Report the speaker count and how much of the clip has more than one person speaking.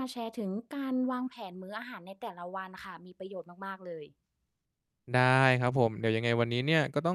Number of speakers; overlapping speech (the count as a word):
two, no overlap